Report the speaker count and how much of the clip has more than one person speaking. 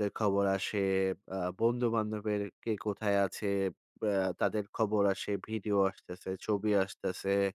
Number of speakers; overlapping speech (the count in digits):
1, no overlap